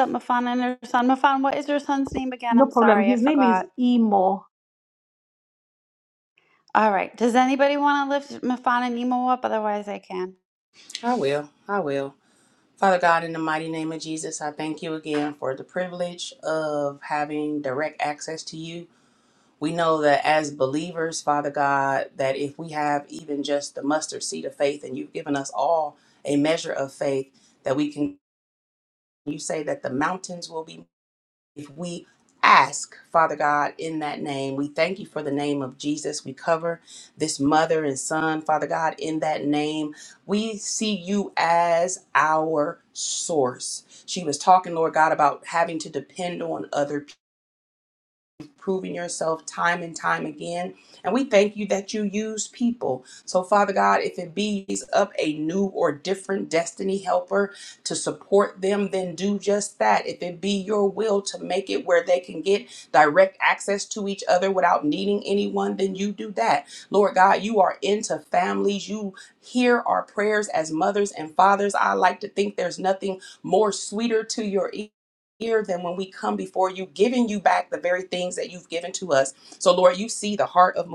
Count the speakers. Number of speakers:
3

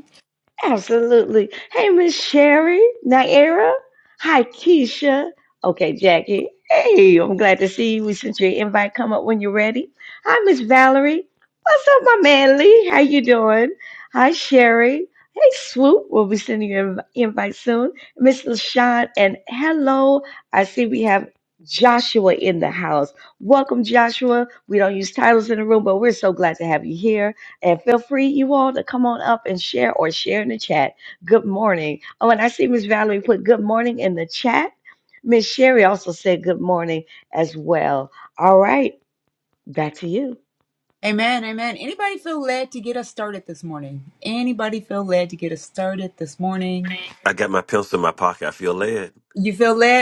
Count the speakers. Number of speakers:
3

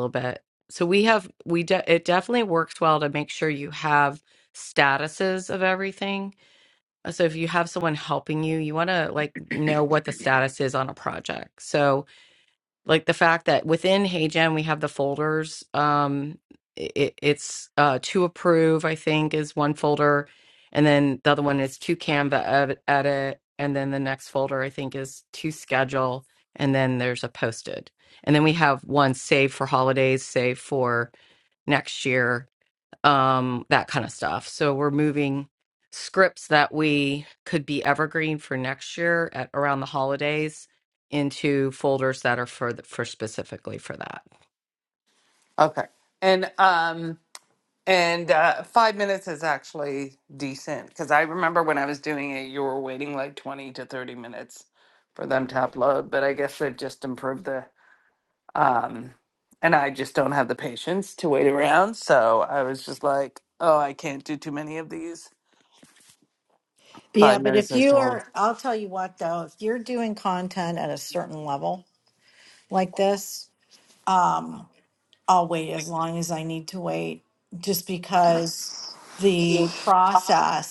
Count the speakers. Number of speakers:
3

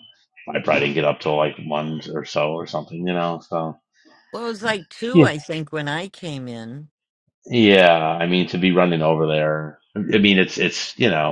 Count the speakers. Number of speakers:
2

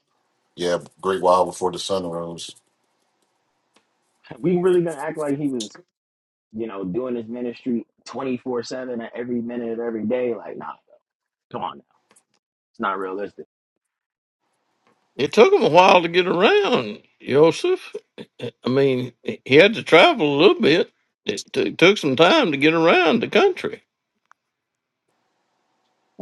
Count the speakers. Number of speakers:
3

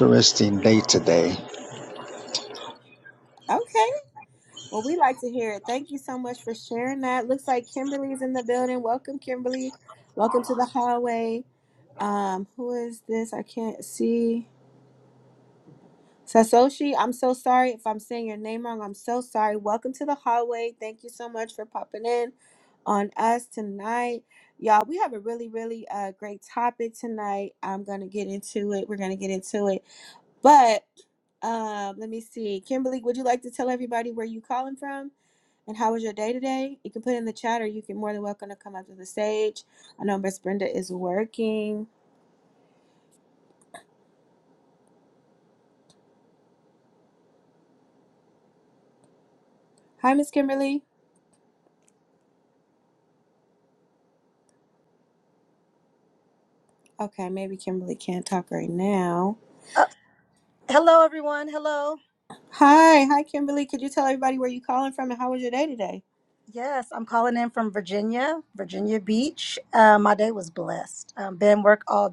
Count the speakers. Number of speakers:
3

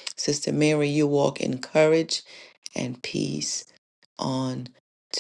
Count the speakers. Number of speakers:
1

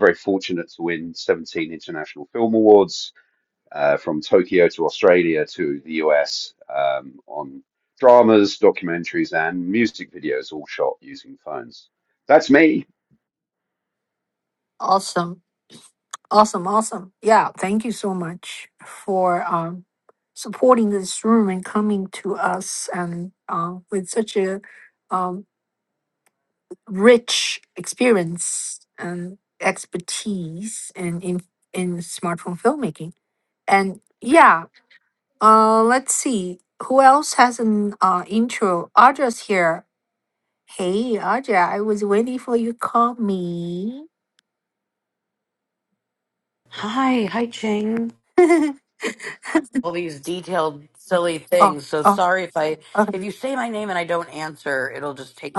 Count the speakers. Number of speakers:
3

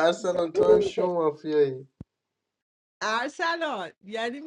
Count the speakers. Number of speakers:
2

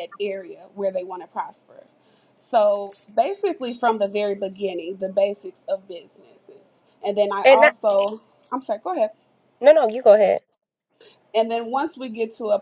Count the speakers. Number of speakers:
2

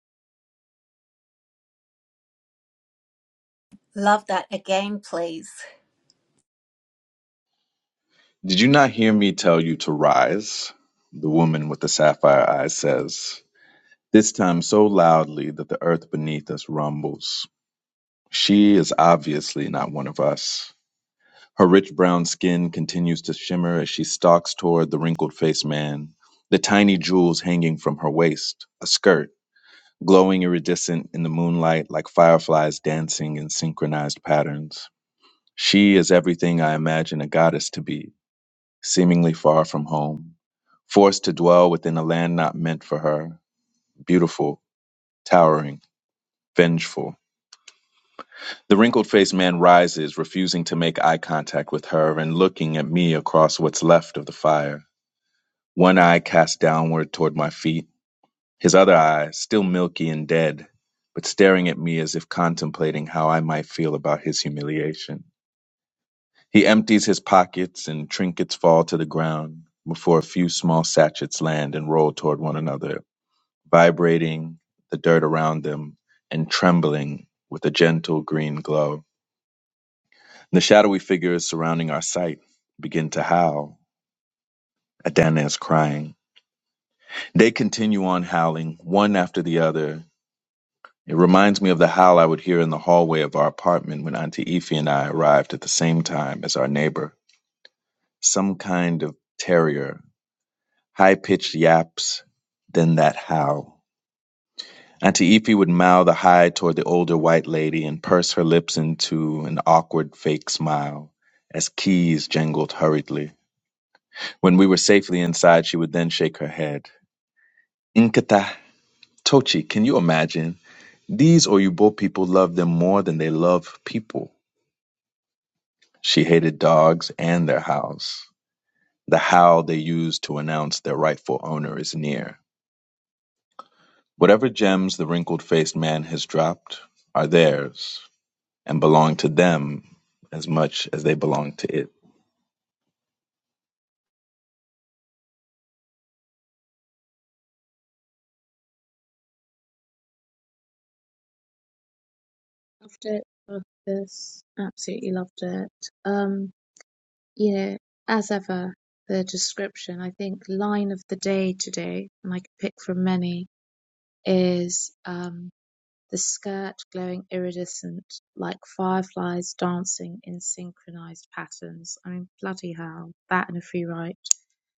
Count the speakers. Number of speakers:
3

